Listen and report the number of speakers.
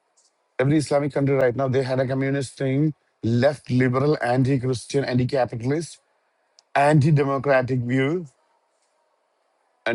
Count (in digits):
1